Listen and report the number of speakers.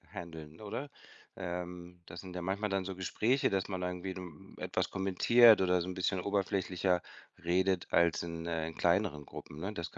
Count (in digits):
1